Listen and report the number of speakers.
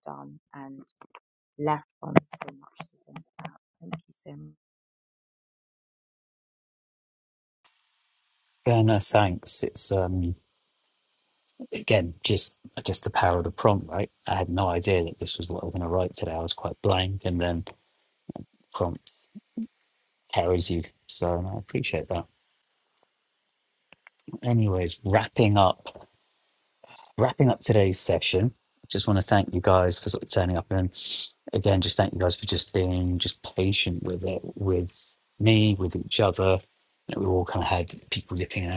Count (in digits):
2